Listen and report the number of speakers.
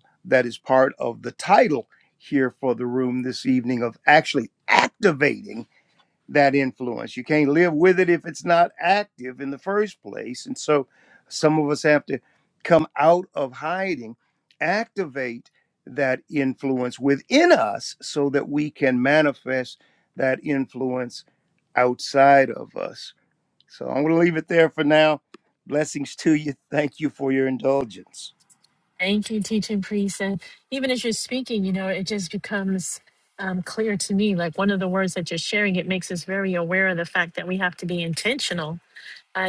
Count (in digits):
2